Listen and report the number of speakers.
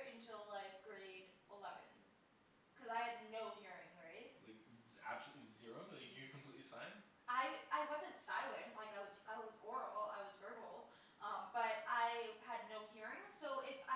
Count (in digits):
2